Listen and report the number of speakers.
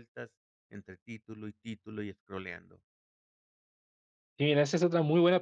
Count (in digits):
2